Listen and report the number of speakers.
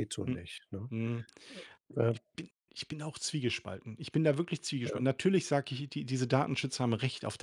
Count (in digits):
2